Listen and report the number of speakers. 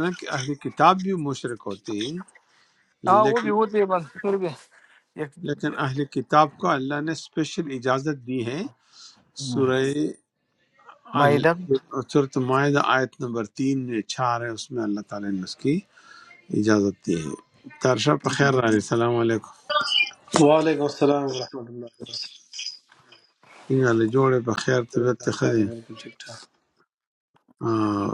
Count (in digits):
3